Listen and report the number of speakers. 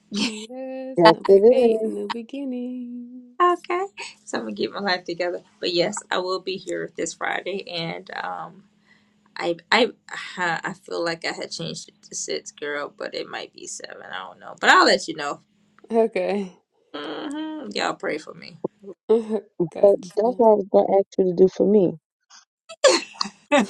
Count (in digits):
3